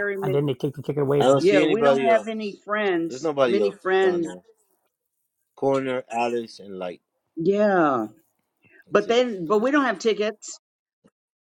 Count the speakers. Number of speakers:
three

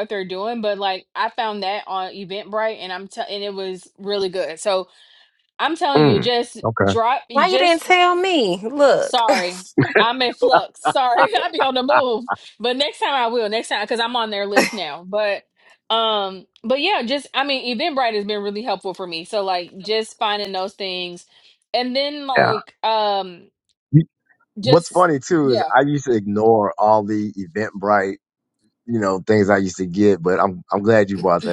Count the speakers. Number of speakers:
three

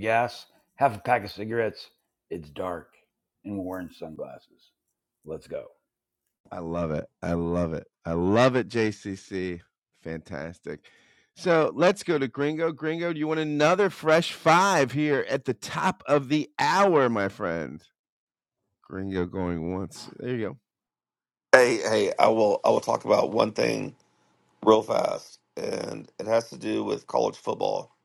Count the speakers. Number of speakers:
three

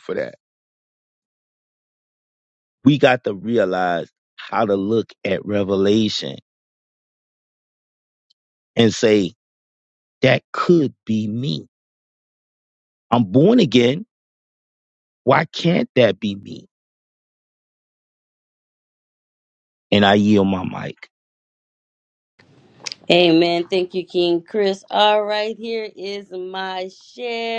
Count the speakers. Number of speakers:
two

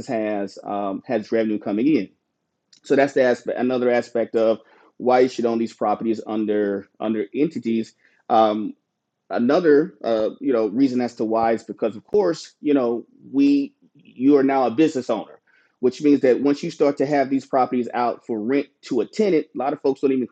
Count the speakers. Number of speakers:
one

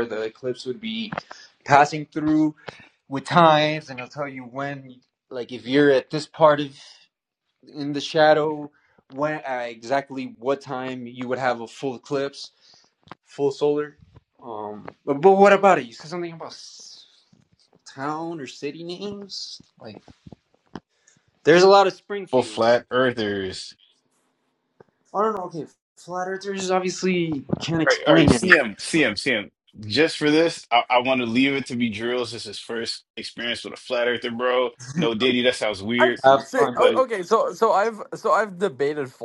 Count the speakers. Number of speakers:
three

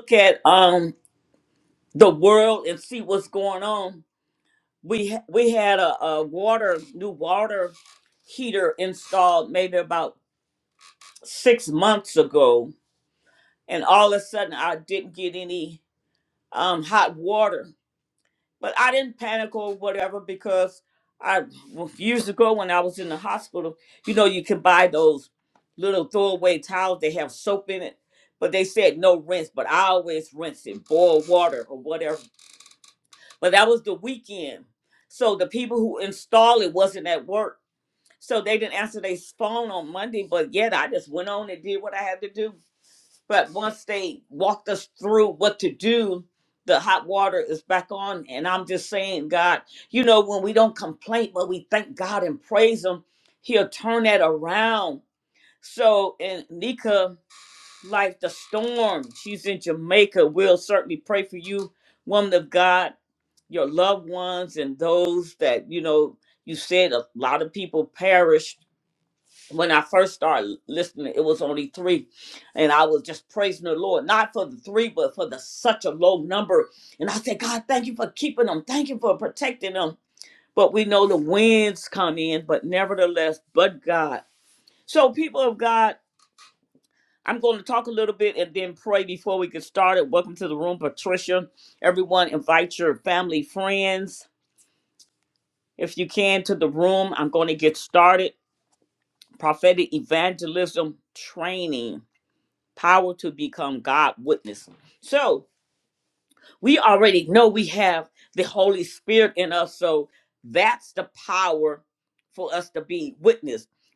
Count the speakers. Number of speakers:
one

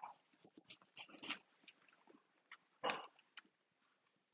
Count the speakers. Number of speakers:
zero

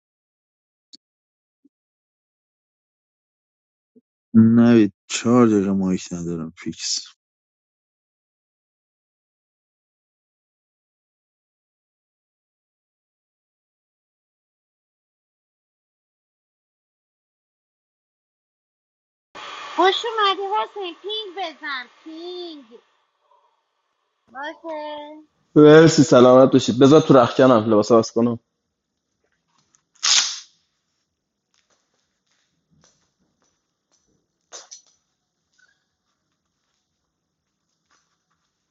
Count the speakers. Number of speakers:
three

